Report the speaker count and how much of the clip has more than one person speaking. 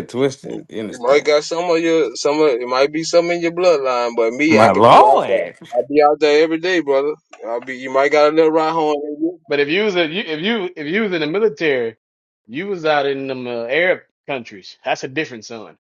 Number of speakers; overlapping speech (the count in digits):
3, about 10%